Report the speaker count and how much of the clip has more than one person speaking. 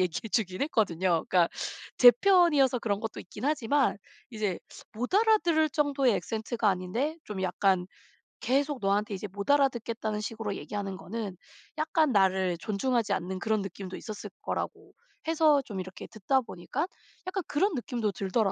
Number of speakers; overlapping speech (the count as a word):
one, no overlap